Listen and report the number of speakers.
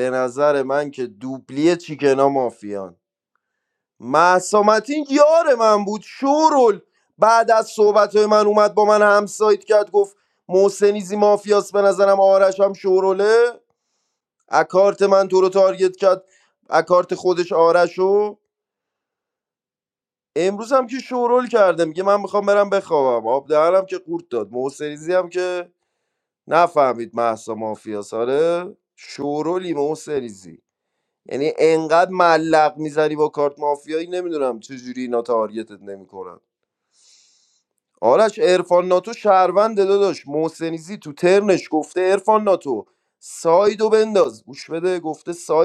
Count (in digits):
1